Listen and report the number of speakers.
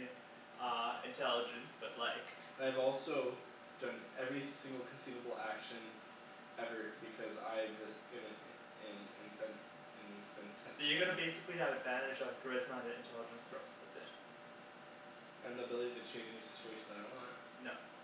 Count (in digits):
2